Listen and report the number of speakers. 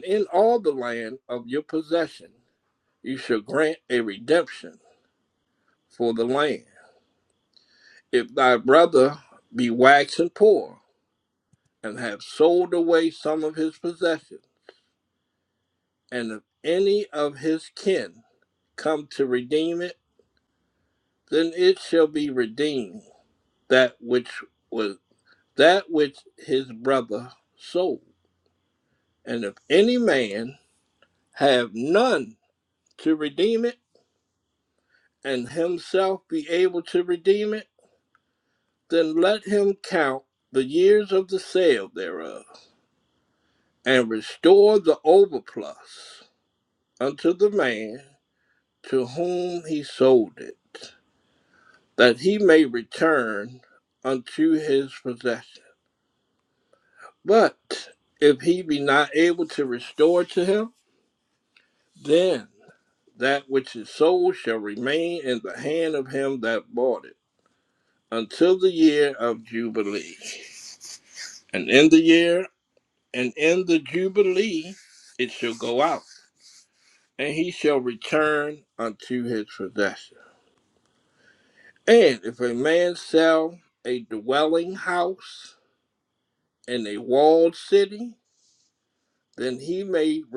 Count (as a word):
one